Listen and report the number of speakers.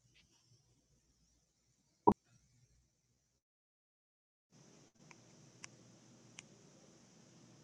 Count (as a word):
zero